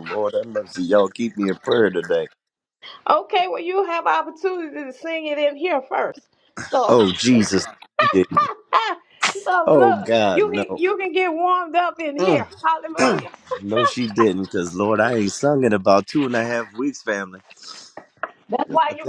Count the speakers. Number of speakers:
2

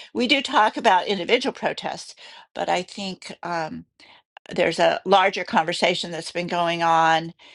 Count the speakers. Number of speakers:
1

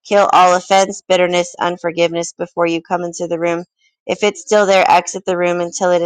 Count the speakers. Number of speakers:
1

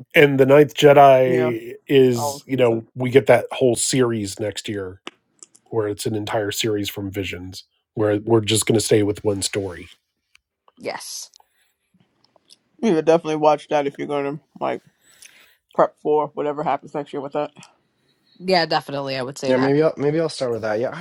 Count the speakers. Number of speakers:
4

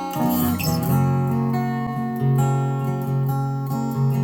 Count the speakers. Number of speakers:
0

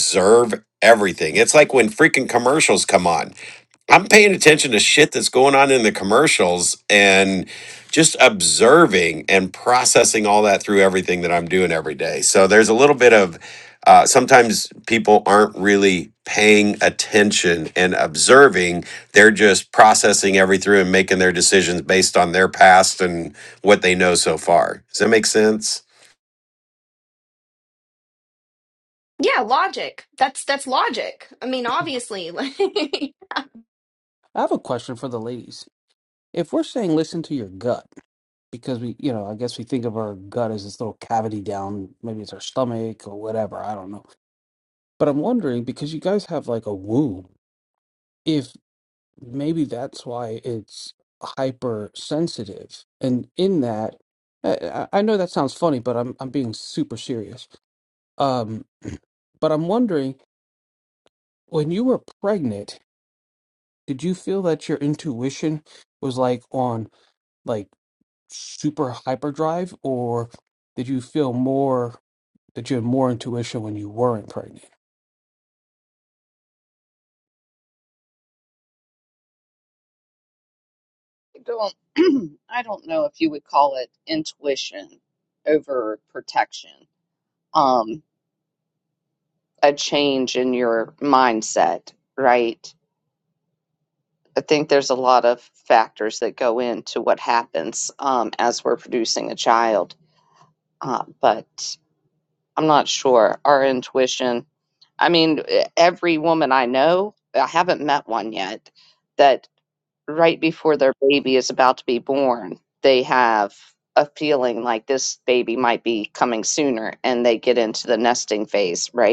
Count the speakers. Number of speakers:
4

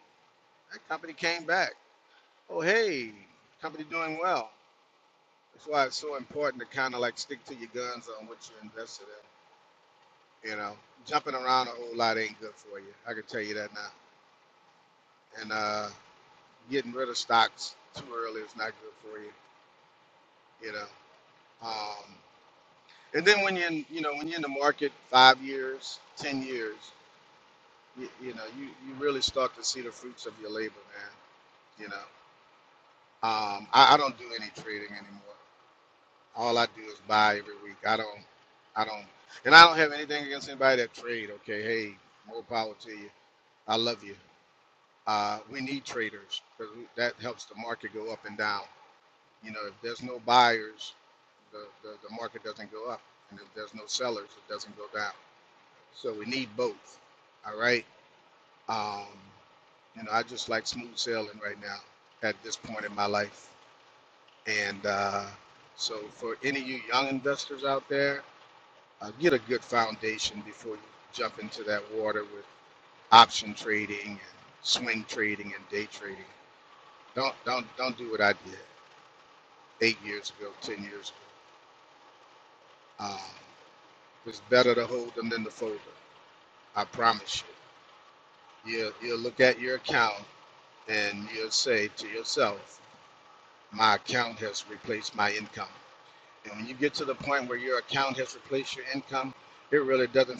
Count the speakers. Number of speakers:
1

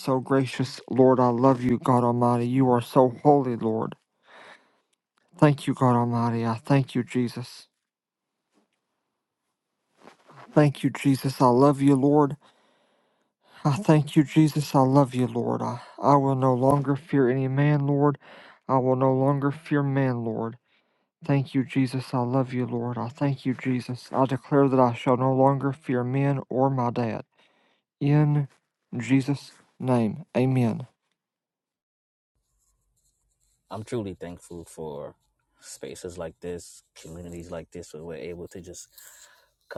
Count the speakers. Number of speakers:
2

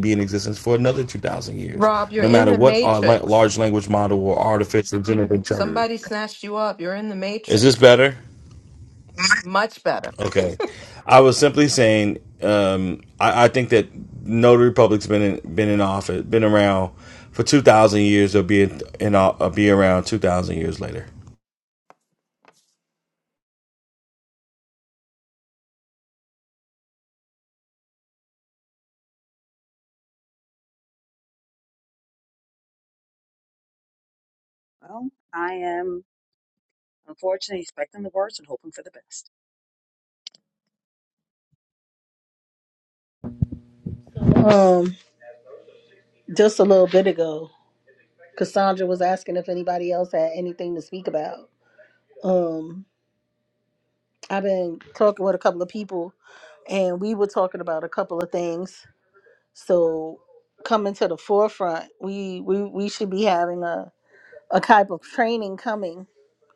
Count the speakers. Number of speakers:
4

